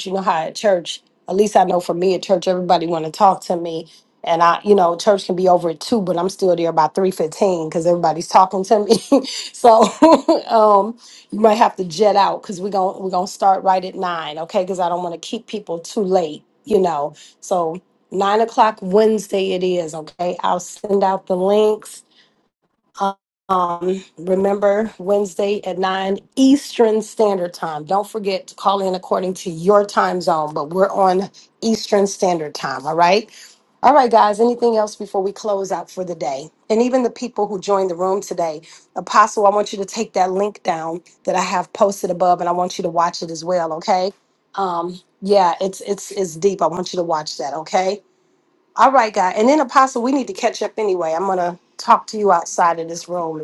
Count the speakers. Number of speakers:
1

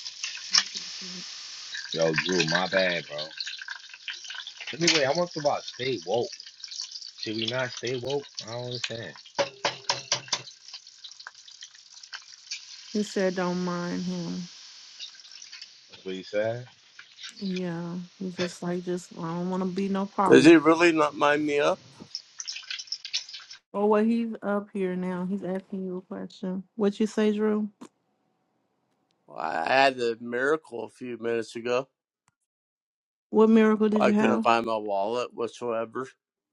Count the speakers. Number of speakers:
3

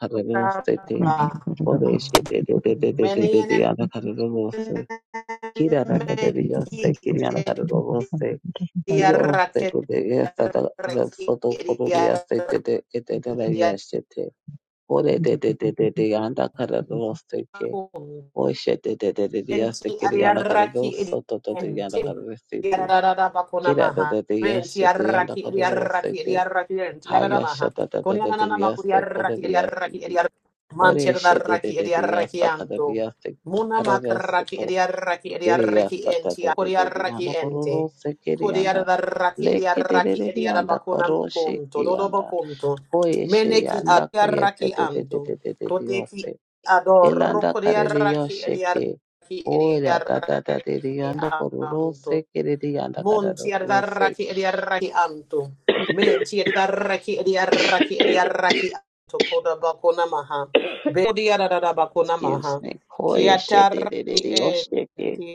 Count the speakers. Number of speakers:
2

